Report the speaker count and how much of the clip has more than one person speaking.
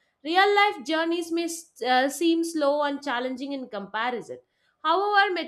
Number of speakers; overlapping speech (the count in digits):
1, no overlap